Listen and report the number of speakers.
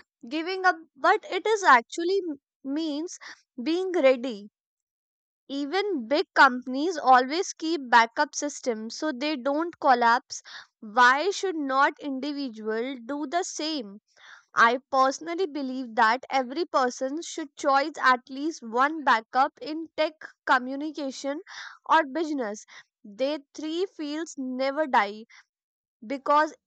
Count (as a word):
one